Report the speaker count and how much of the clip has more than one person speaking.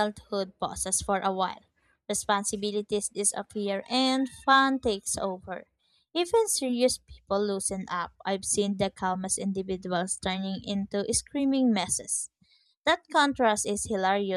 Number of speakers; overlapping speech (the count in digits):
1, no overlap